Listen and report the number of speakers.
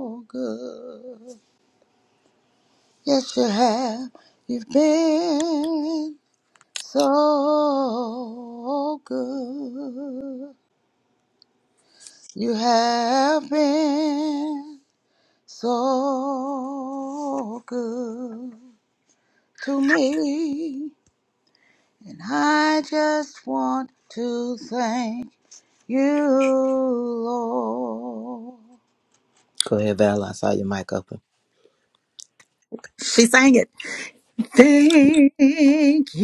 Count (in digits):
3